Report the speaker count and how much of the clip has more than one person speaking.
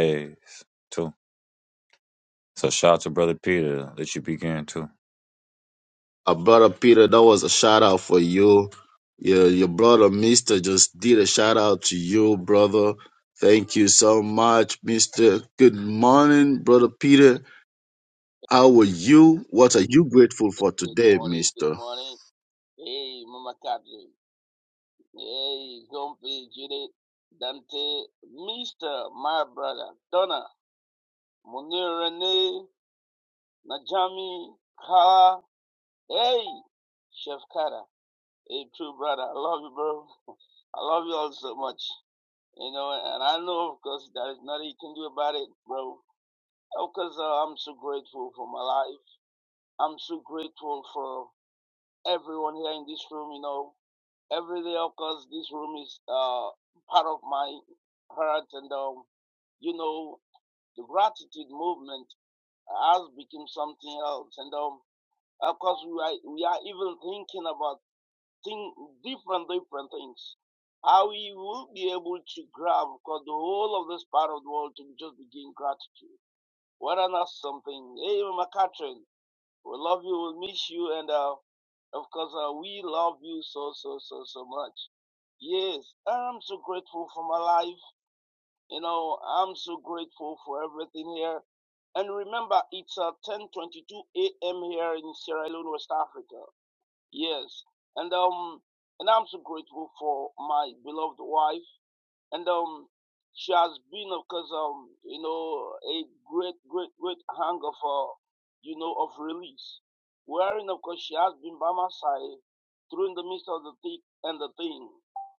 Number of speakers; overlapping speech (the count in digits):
3, about 1%